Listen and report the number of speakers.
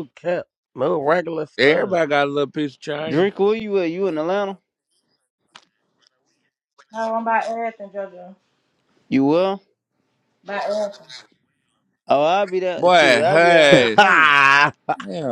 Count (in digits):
4